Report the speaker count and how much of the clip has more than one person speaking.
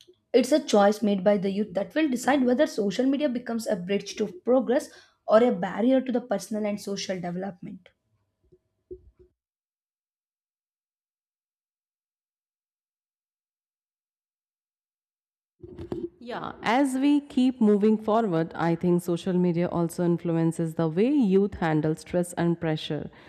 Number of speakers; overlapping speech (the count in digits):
2, no overlap